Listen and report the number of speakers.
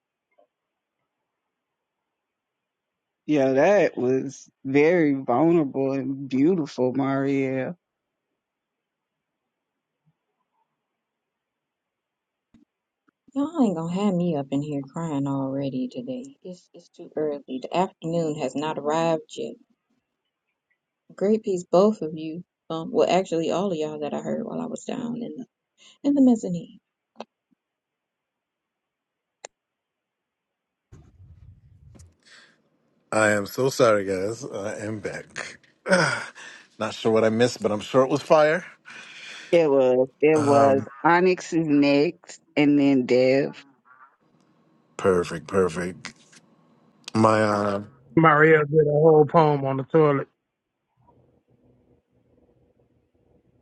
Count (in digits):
4